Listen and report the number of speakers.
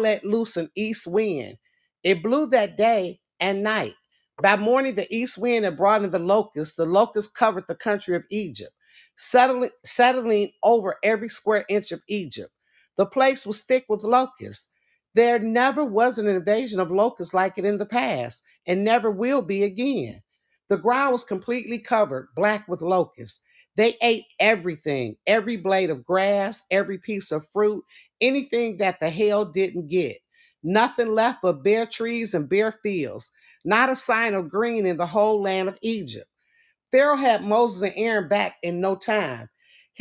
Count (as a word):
one